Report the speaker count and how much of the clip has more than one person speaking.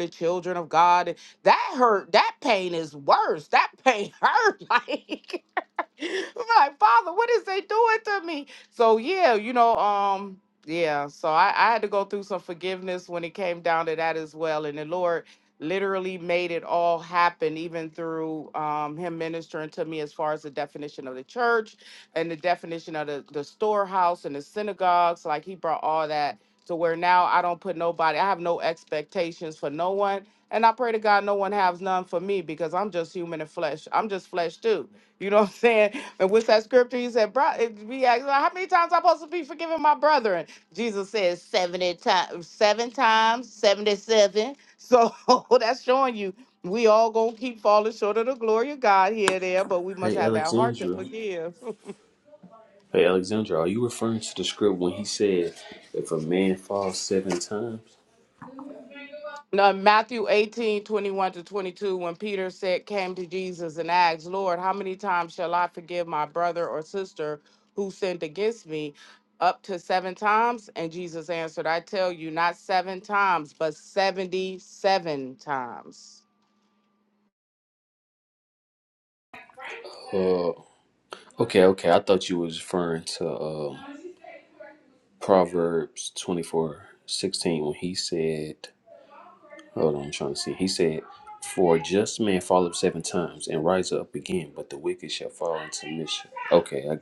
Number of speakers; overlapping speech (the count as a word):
two, about 1%